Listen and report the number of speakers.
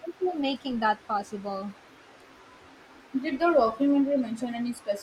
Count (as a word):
two